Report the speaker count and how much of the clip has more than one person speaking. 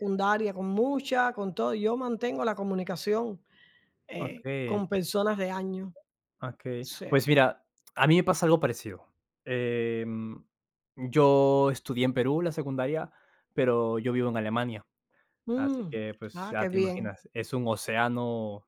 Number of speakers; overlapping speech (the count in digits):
2, about 10%